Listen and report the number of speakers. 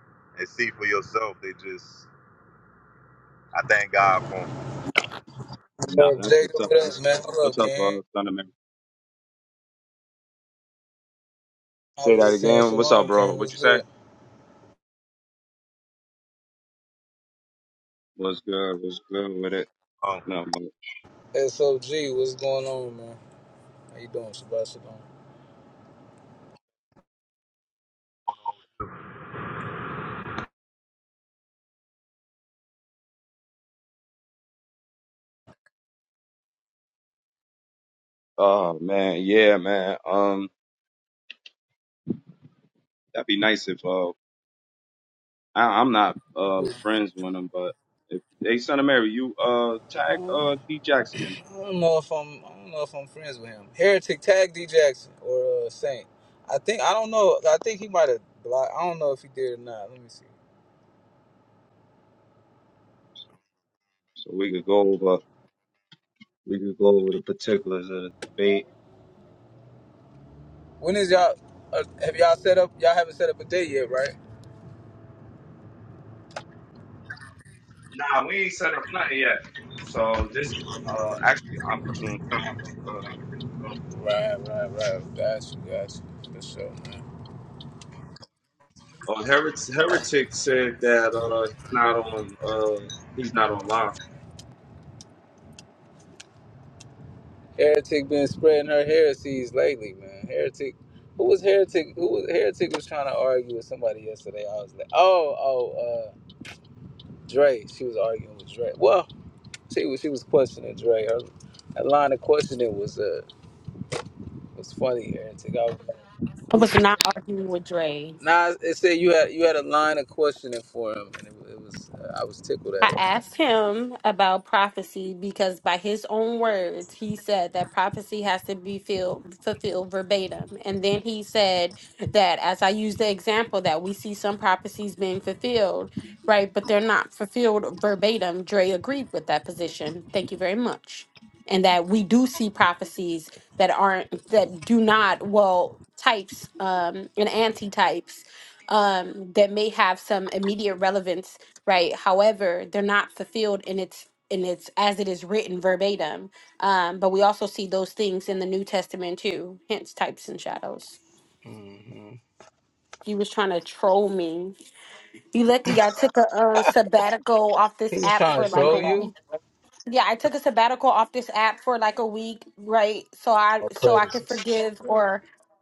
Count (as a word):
four